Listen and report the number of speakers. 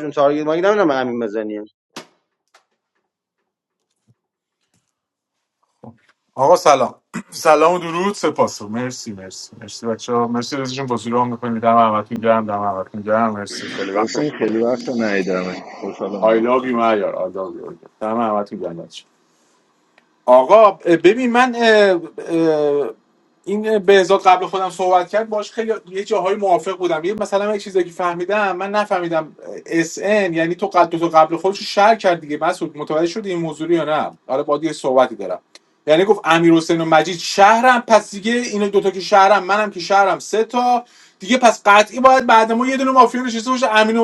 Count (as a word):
three